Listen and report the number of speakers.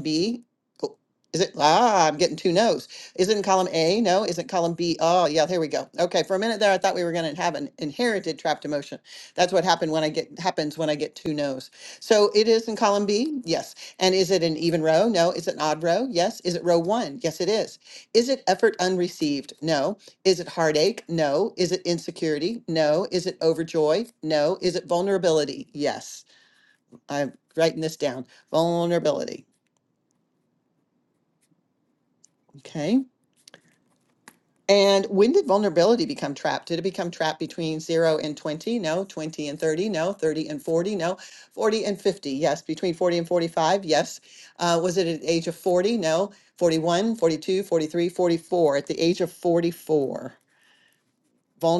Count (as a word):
one